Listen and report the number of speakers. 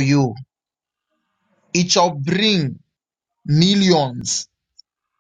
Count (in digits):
1